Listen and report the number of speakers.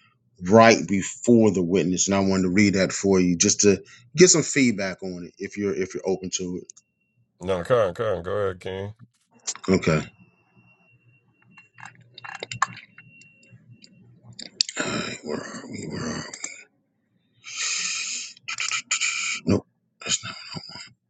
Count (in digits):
2